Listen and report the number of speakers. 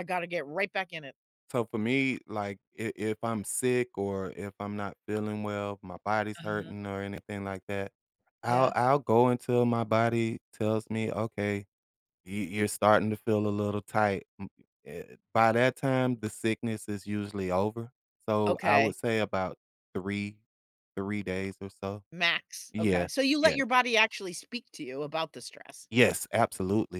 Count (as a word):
two